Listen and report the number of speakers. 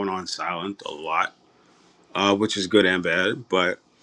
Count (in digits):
1